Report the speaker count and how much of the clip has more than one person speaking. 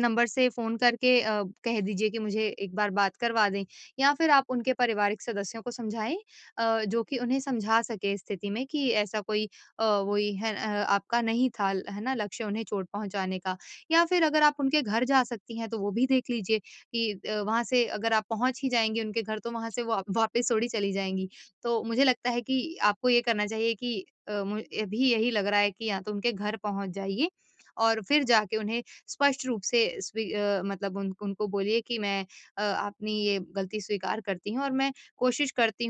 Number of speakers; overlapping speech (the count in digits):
1, no overlap